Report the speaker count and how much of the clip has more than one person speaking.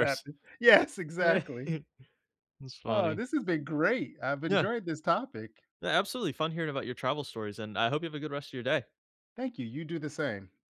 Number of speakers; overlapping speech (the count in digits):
2, about 6%